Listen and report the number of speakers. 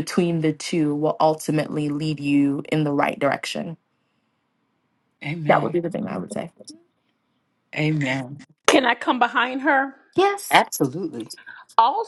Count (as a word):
three